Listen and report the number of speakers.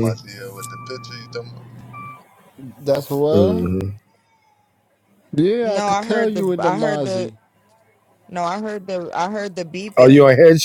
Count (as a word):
four